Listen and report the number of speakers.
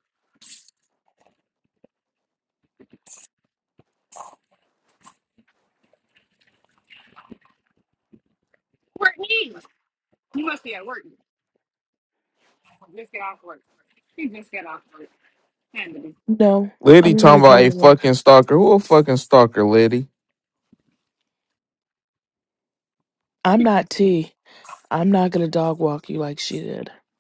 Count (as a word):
three